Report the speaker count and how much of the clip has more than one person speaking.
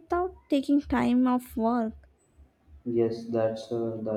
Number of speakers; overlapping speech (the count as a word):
two, no overlap